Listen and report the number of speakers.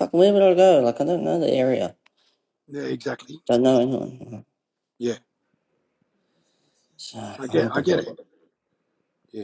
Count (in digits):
2